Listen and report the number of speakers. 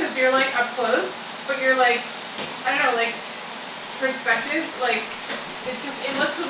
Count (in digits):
1